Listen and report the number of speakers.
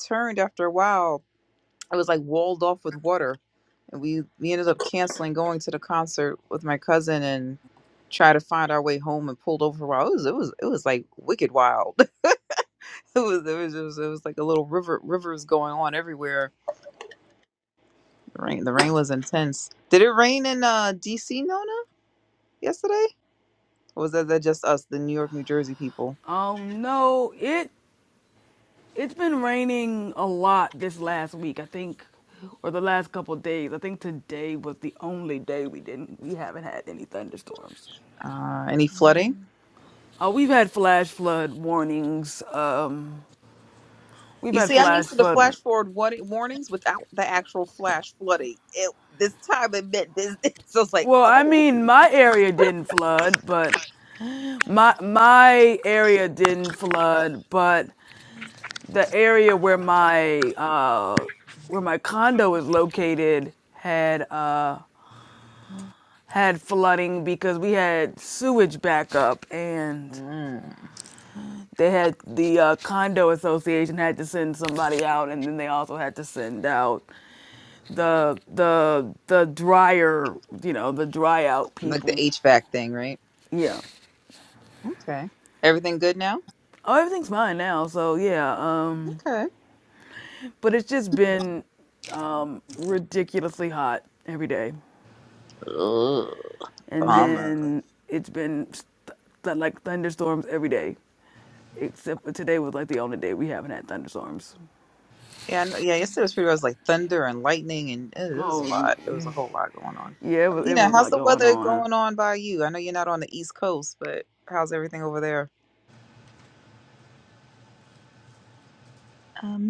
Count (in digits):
2